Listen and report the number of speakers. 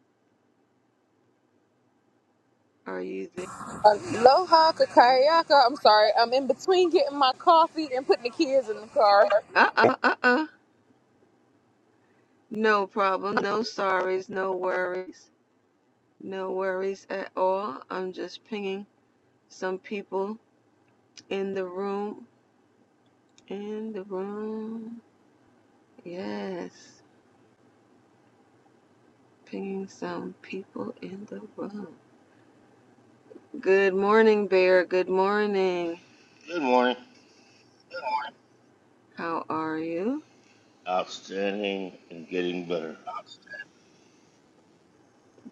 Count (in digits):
3